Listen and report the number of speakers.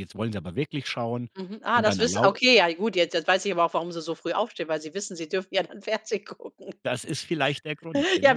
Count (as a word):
two